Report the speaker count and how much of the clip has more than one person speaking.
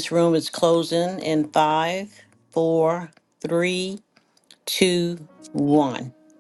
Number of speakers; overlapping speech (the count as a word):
one, no overlap